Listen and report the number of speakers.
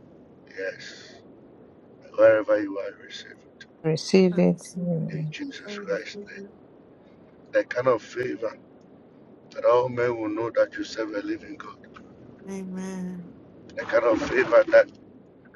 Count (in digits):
3